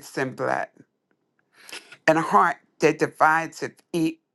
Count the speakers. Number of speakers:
1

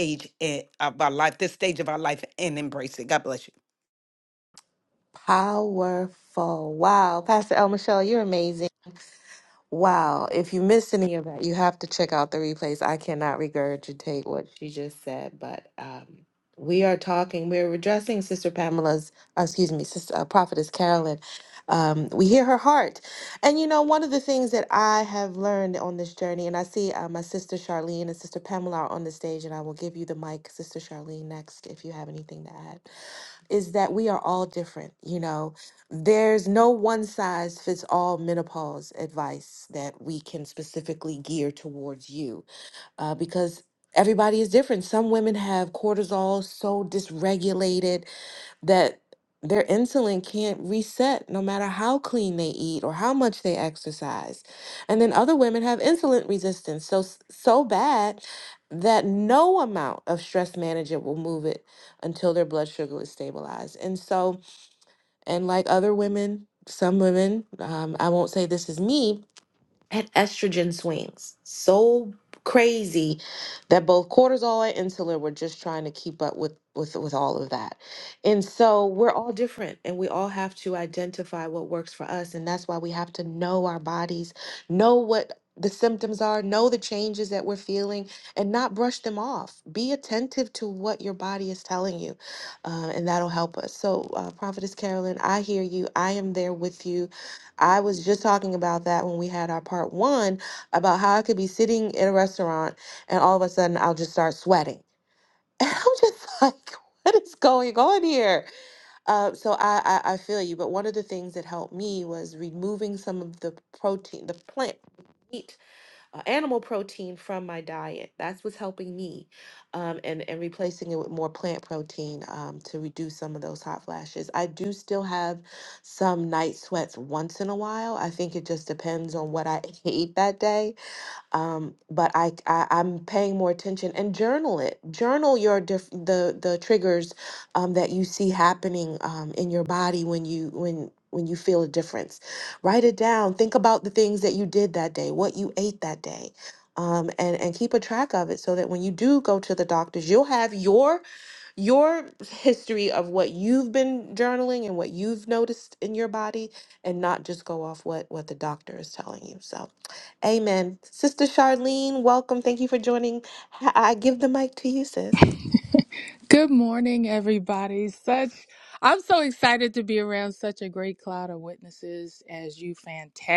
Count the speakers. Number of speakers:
3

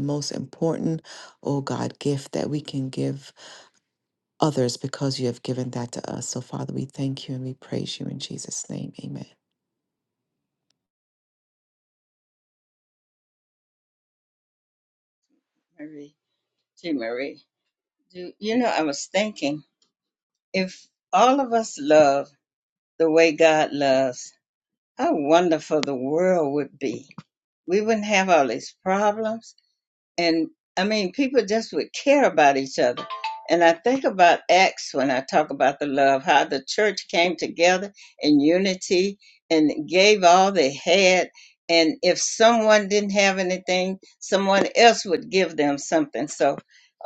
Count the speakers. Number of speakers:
2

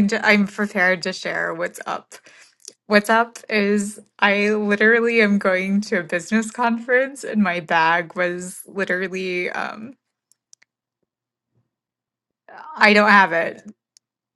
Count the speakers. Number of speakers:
1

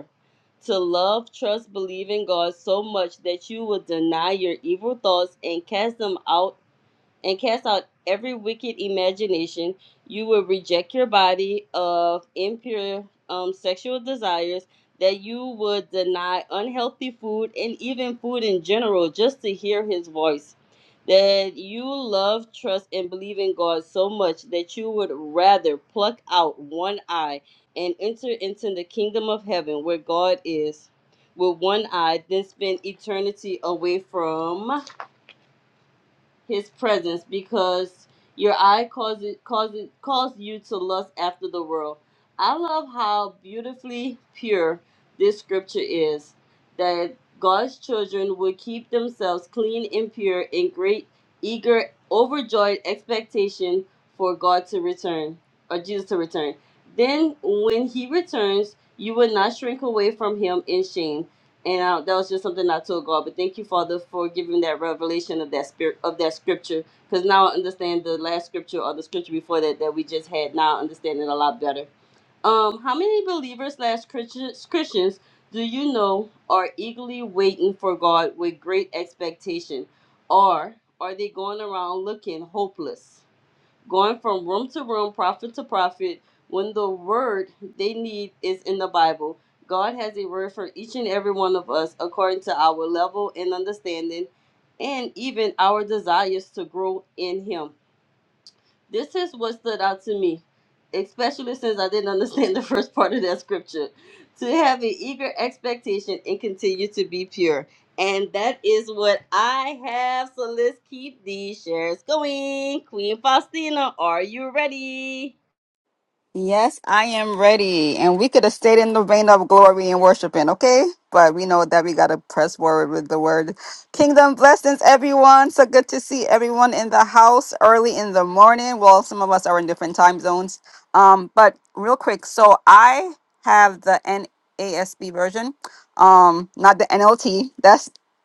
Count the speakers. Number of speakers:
2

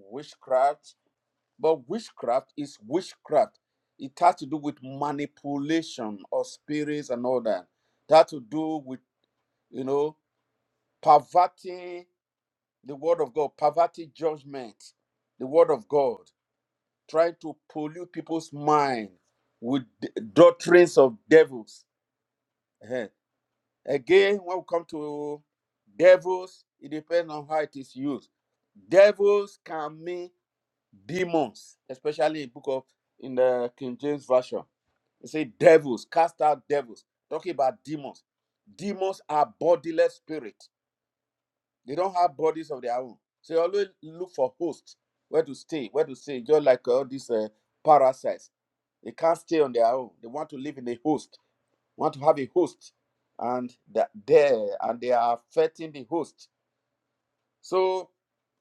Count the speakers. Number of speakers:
1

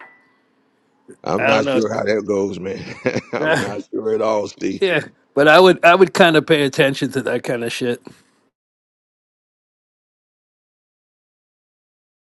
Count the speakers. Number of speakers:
2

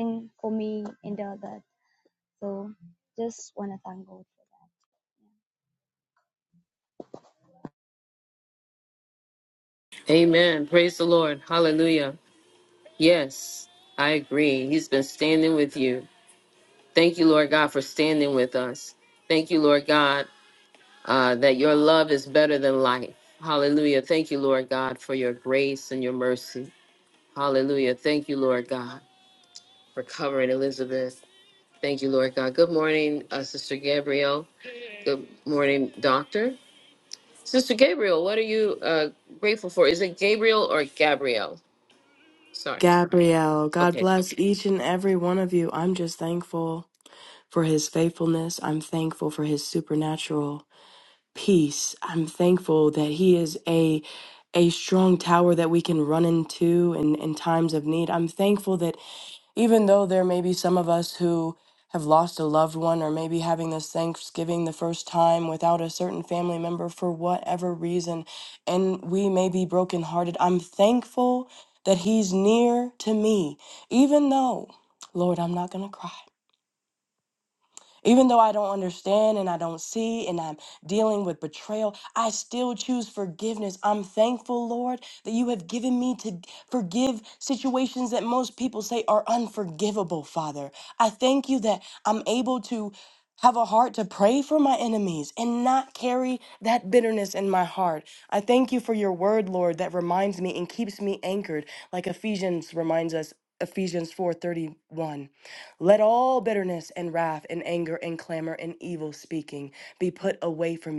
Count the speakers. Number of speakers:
3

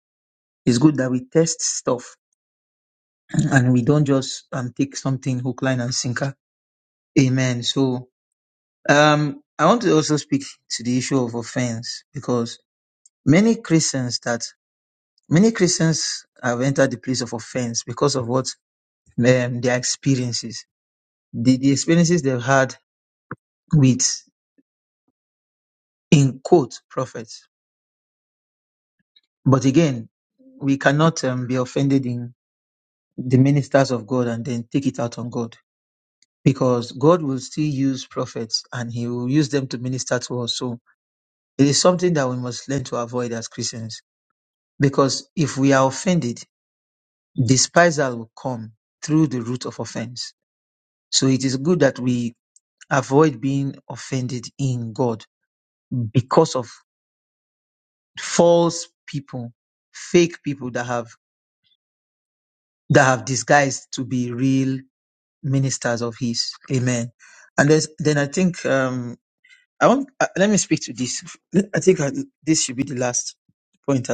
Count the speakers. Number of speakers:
1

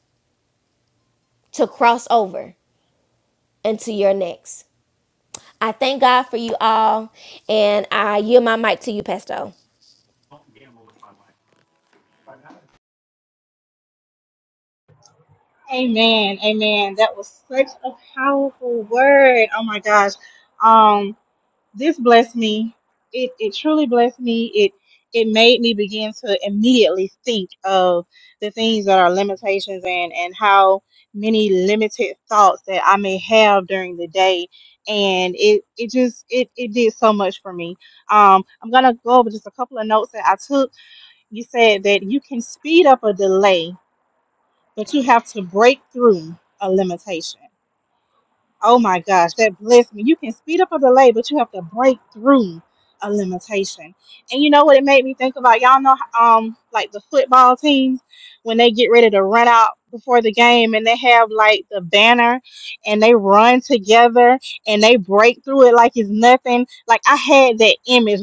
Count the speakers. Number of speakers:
2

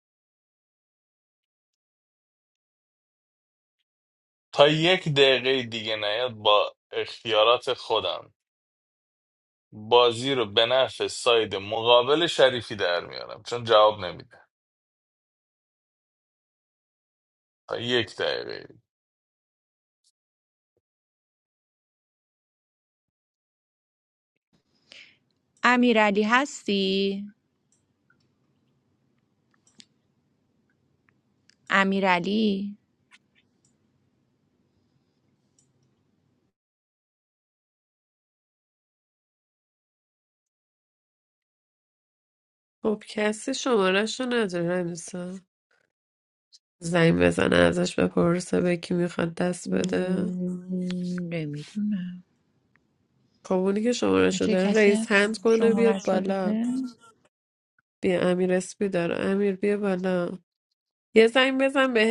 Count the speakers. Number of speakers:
3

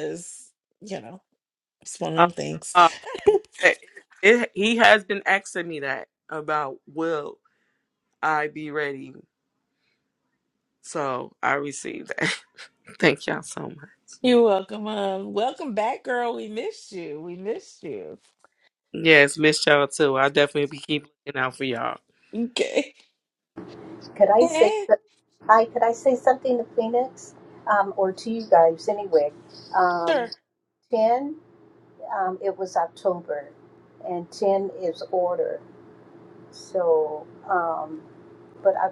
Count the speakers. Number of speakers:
3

